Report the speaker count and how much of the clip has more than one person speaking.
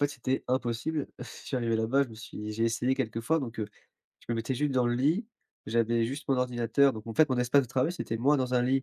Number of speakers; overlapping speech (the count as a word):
one, no overlap